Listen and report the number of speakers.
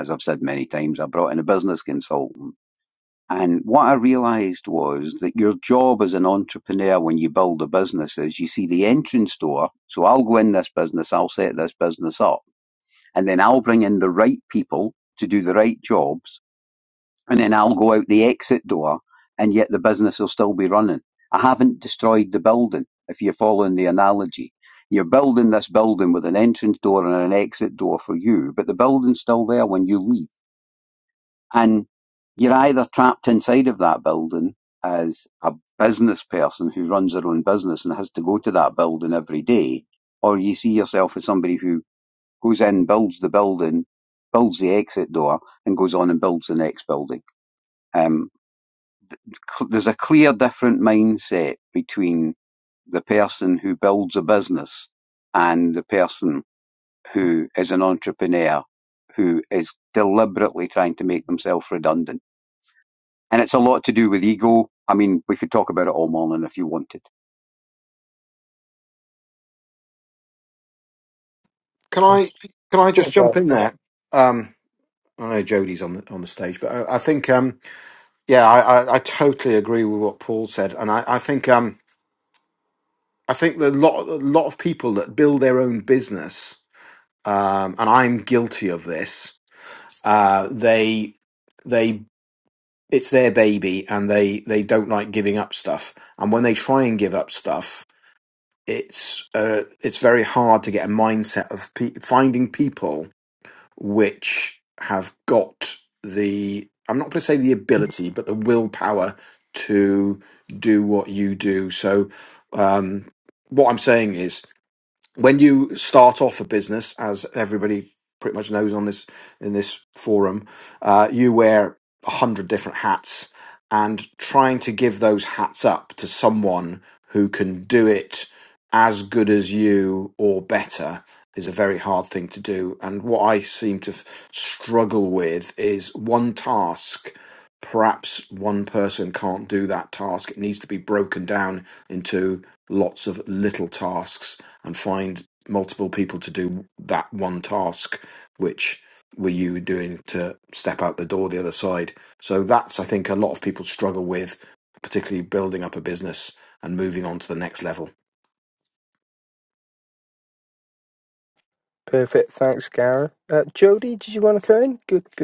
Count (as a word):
three